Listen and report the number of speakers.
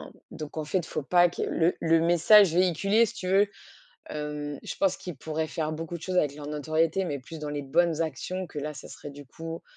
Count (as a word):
one